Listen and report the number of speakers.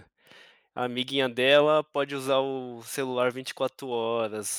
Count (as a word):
one